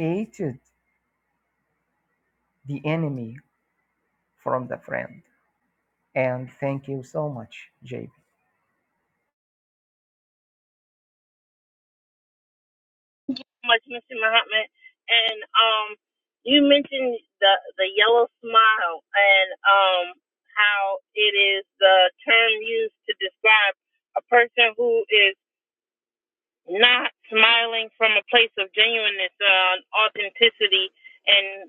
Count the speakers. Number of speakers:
2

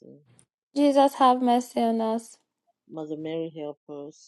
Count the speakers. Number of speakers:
2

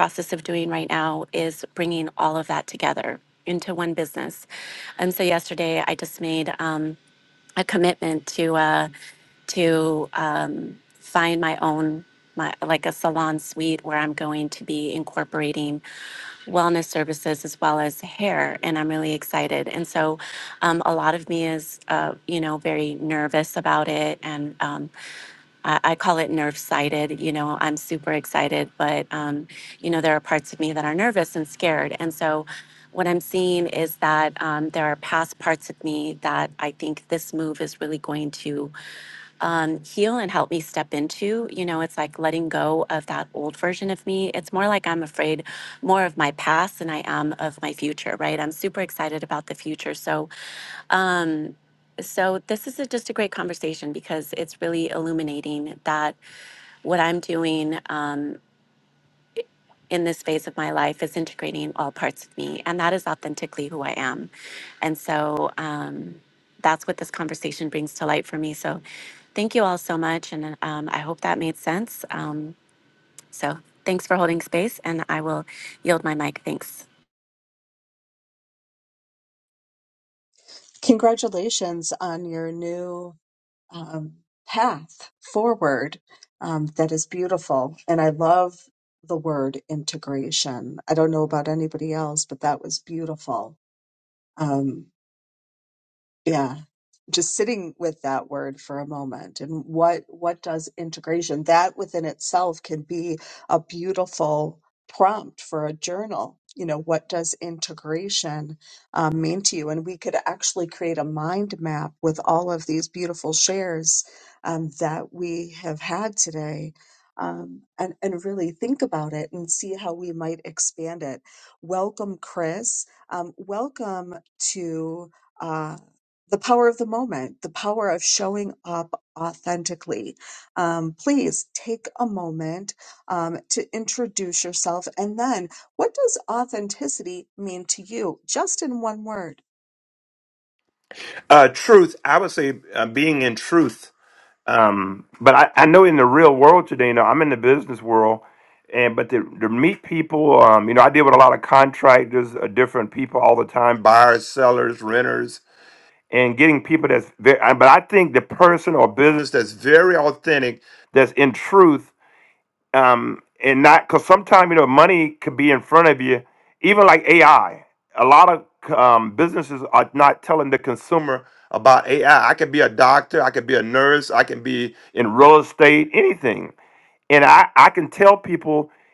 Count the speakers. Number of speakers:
3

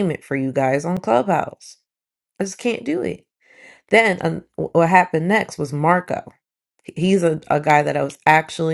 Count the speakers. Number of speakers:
1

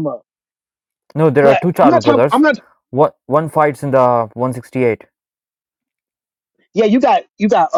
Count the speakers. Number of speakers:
2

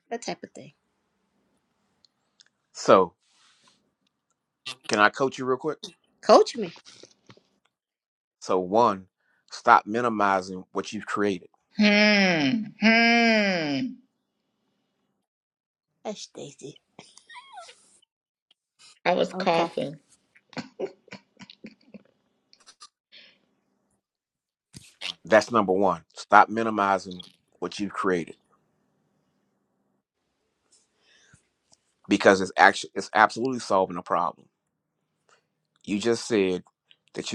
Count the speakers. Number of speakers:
3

